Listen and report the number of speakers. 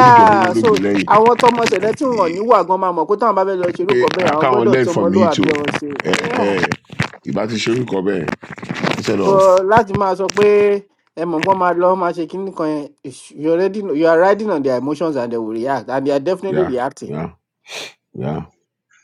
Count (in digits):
2